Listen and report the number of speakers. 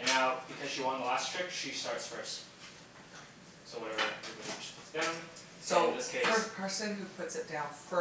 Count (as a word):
two